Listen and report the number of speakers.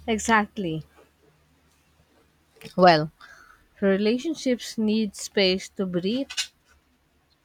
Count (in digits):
1